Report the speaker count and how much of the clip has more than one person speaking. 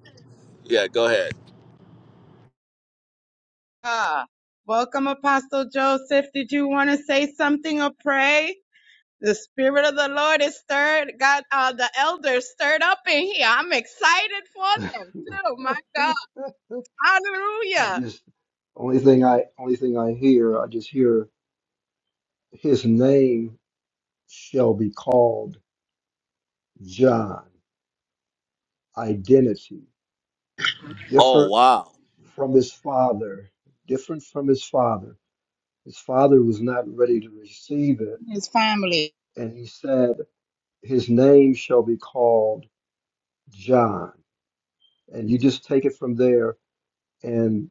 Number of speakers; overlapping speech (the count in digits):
3, about 1%